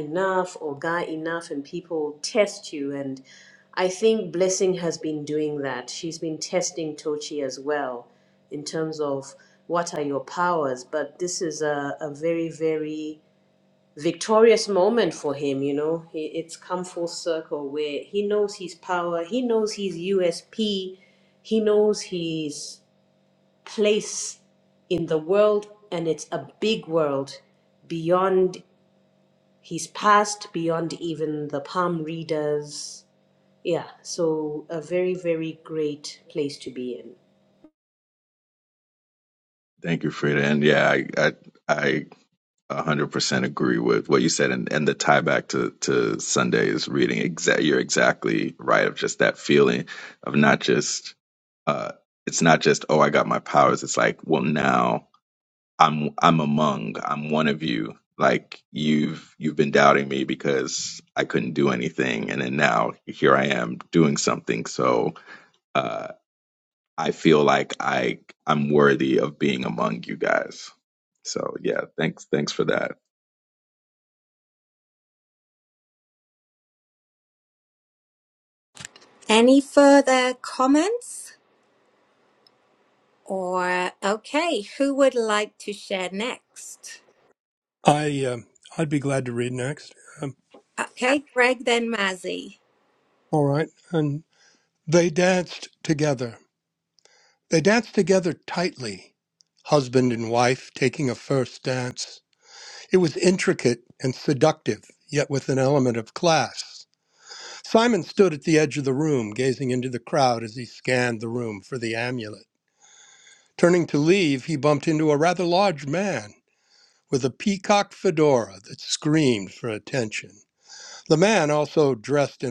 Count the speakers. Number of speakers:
4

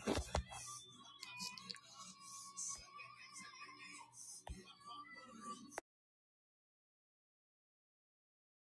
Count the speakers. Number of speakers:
0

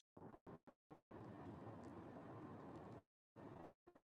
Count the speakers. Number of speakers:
0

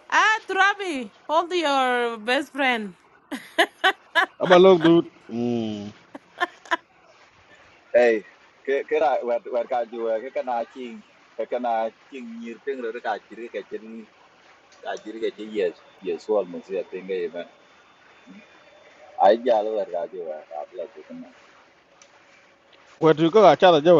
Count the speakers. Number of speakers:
3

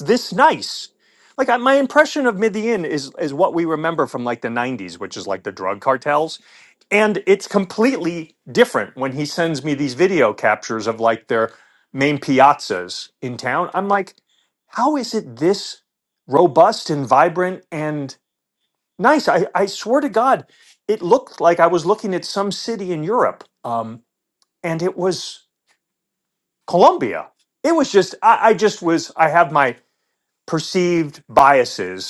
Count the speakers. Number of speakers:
1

